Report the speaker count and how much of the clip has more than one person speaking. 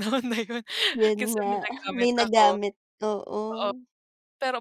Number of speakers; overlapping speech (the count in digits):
2, about 23%